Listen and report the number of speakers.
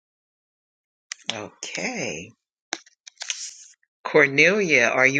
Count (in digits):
1